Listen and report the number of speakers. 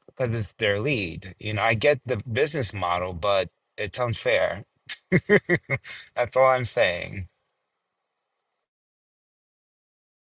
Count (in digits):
1